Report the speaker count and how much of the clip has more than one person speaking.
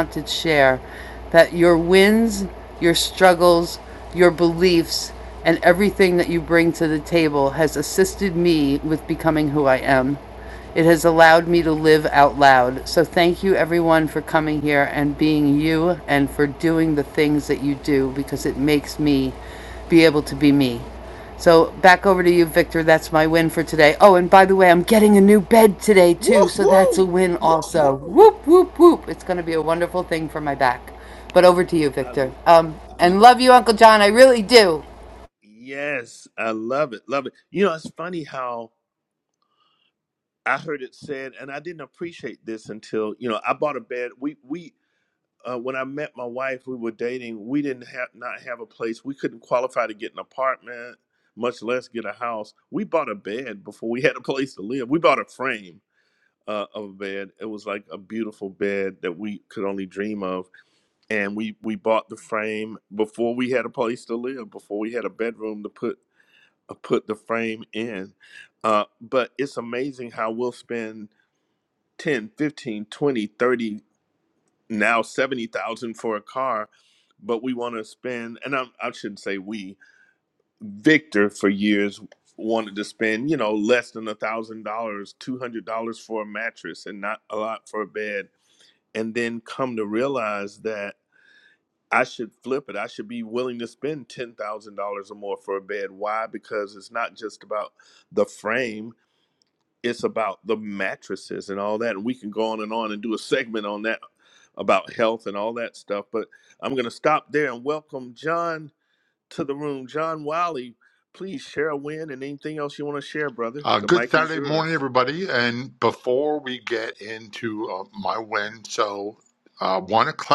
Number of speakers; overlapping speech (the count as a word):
three, about 1%